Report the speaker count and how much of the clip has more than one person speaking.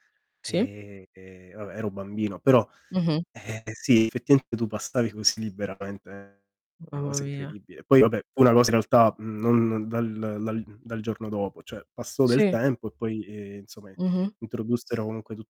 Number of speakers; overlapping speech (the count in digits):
2, about 7%